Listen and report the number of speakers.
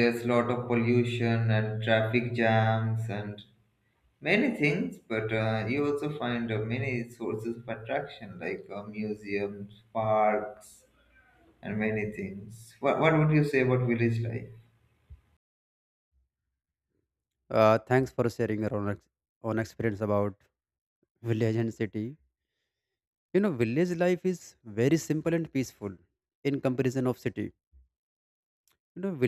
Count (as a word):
two